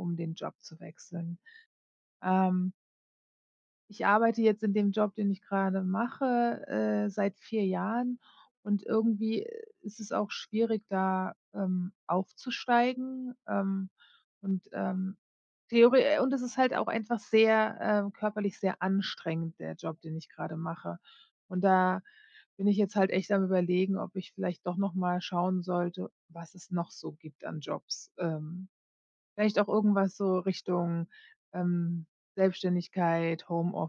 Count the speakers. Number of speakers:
one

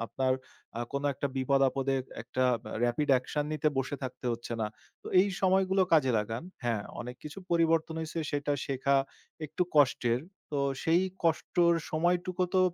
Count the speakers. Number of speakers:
one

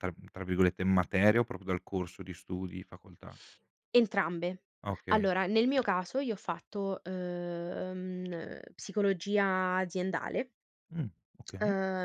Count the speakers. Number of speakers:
two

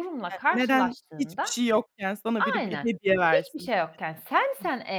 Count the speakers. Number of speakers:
two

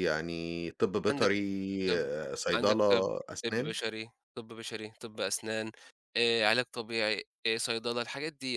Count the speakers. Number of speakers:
two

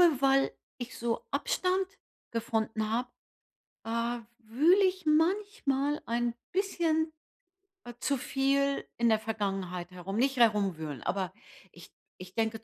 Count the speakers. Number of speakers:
one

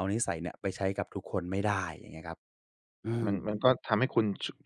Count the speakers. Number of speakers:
two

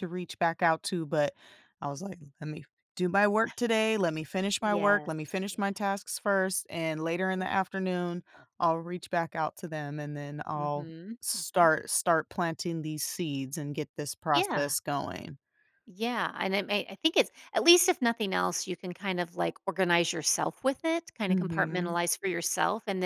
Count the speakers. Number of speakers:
two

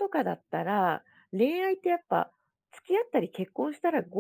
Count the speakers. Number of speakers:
one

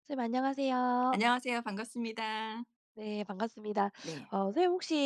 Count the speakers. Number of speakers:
two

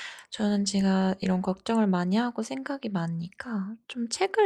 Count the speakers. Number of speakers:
one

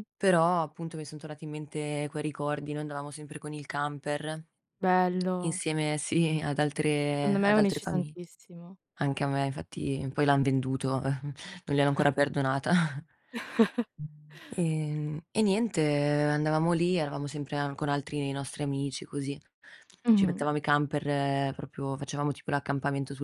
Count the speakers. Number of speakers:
two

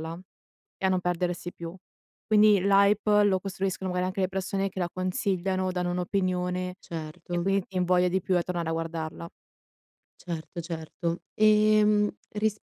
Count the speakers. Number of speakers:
two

